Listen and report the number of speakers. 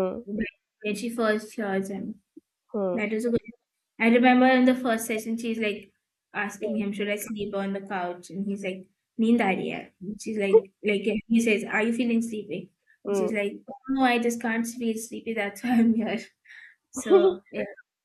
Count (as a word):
two